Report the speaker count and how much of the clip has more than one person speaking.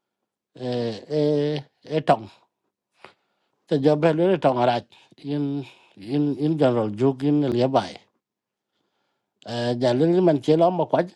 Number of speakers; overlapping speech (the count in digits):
1, no overlap